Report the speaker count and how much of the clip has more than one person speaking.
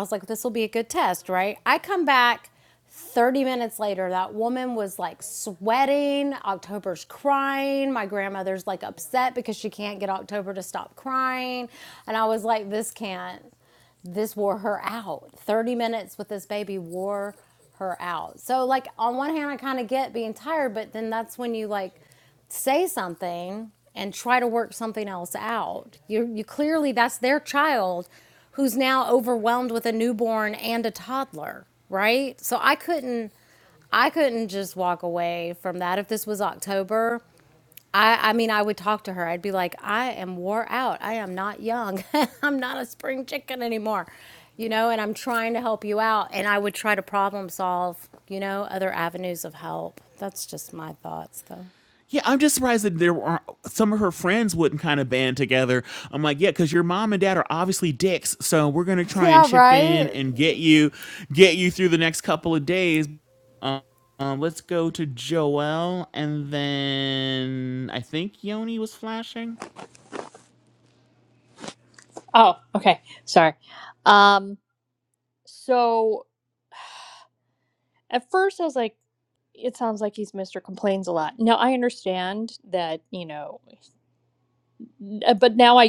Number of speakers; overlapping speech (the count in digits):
3, about 1%